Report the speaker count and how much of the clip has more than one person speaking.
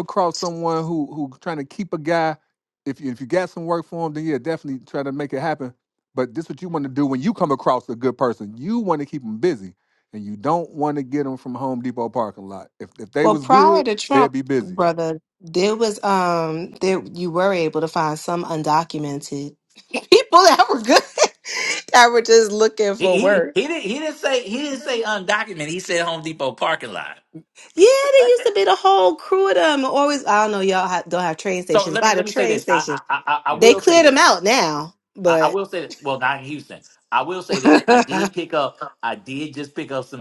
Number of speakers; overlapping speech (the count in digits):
3, about 10%